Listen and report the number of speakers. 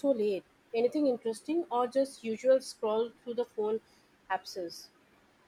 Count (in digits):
1